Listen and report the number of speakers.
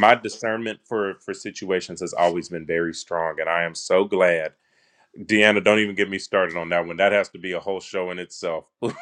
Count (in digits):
1